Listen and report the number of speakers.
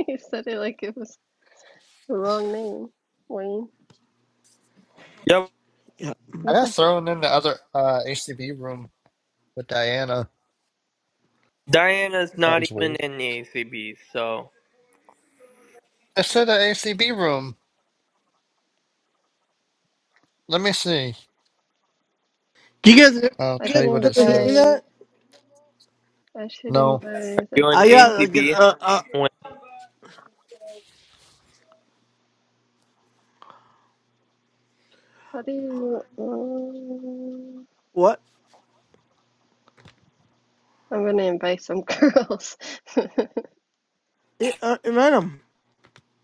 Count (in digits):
4